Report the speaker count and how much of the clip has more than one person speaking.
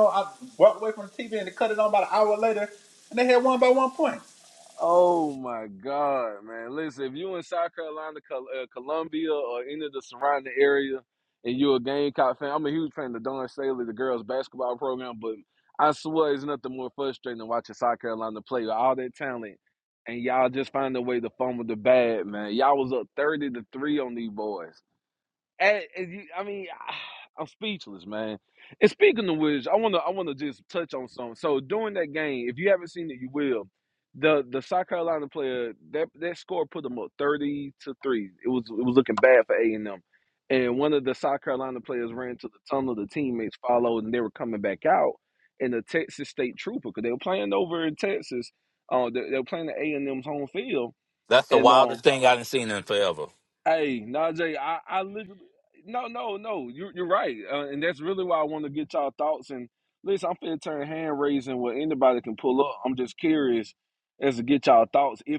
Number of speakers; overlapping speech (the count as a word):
three, about 1%